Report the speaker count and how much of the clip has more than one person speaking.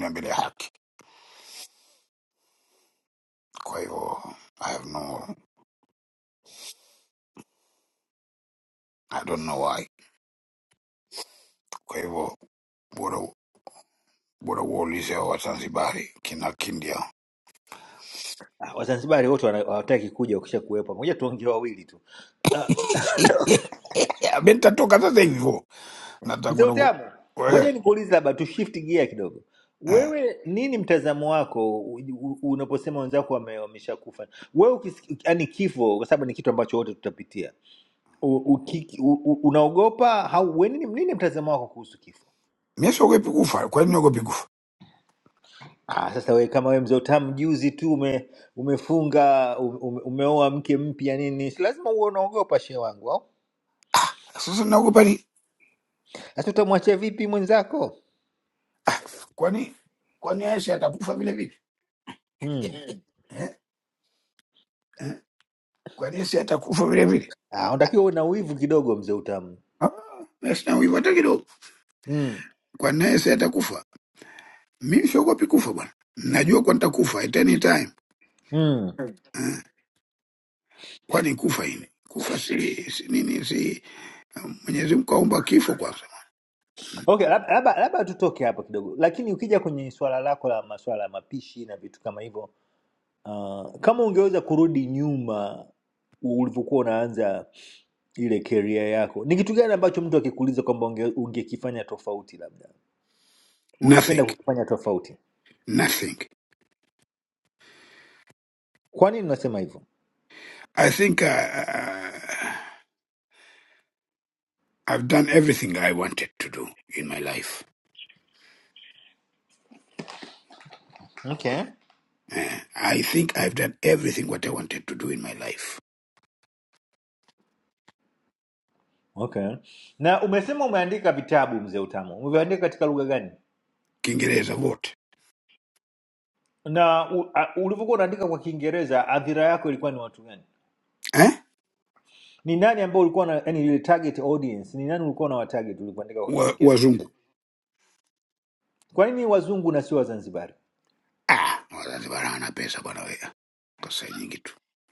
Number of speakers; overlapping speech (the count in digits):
2, about 1%